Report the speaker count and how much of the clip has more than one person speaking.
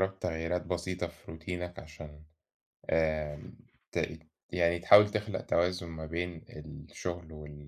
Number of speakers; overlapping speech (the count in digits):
1, no overlap